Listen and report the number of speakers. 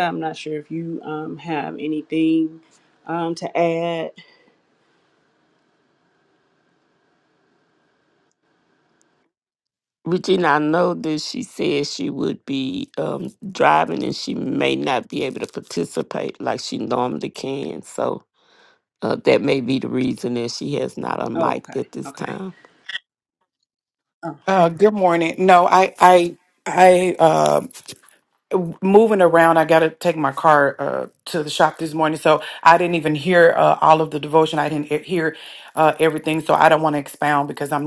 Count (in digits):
3